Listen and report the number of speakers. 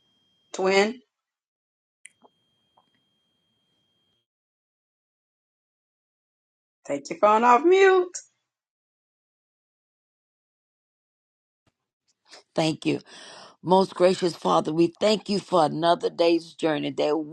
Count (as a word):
two